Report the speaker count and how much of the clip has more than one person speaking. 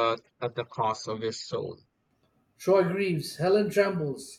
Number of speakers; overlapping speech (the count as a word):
two, no overlap